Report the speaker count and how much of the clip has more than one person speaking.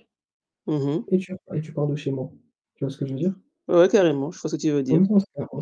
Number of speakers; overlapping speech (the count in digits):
2, about 2%